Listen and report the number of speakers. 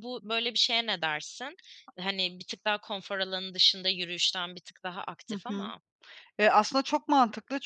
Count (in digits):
2